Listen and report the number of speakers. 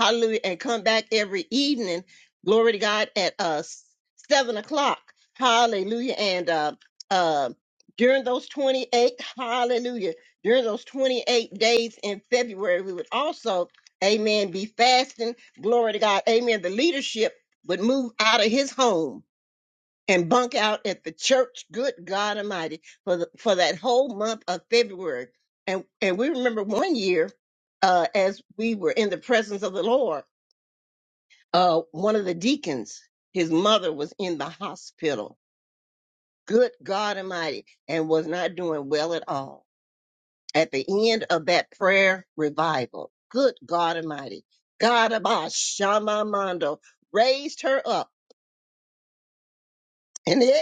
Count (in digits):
1